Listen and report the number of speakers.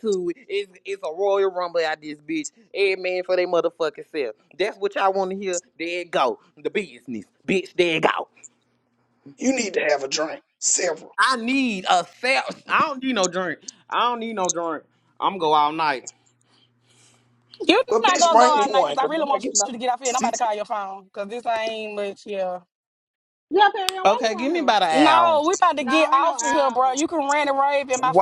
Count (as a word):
four